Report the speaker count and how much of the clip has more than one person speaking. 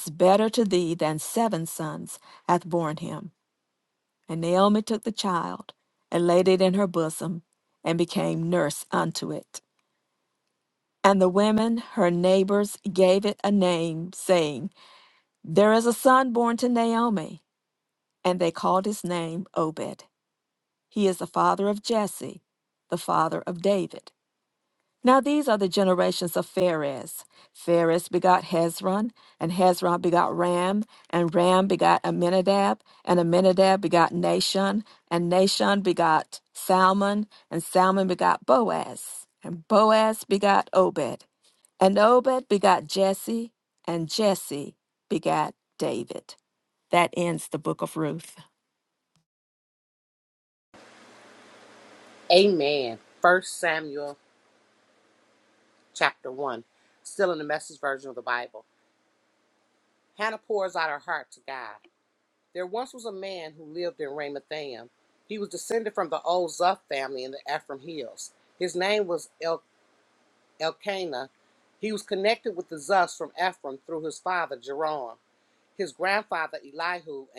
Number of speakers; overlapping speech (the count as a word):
two, no overlap